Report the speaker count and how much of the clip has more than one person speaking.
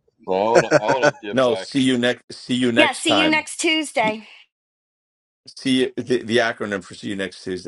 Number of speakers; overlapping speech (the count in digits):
3, about 13%